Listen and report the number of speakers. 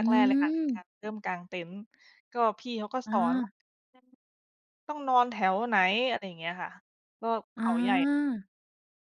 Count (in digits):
2